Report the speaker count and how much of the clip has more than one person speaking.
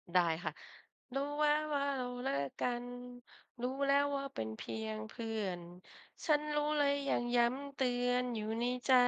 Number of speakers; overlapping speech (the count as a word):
one, no overlap